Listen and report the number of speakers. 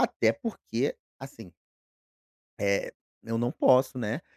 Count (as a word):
one